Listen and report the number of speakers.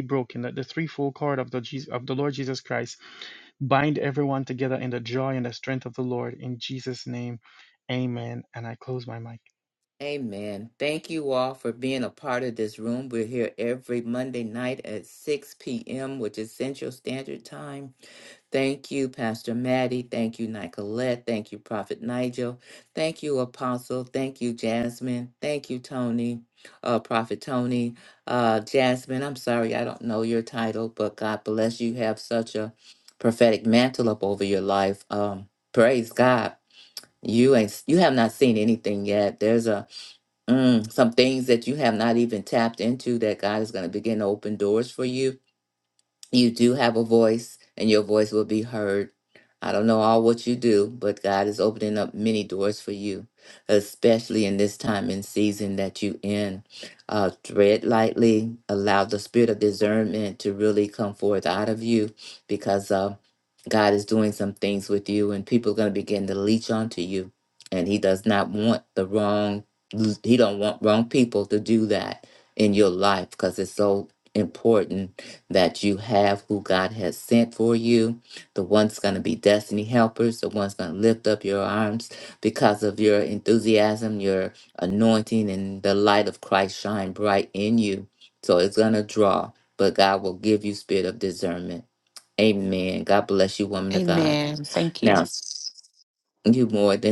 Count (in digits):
3